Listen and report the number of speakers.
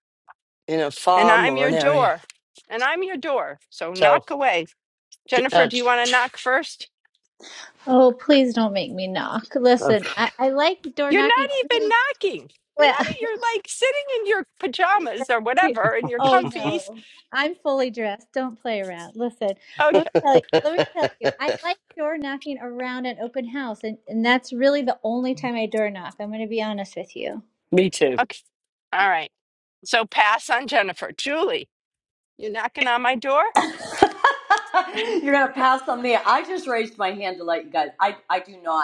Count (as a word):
four